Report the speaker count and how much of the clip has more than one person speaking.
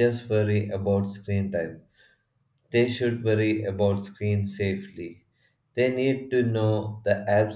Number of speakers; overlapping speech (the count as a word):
one, no overlap